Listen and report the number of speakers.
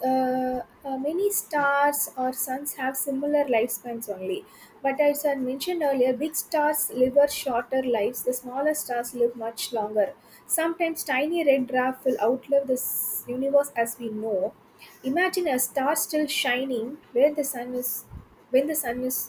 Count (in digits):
1